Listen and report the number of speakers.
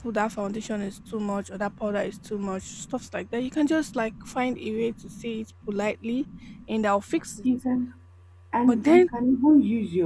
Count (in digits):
2